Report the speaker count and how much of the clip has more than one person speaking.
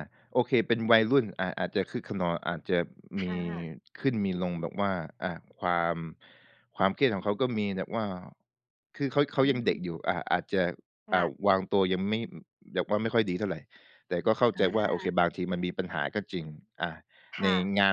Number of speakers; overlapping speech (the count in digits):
2, about 8%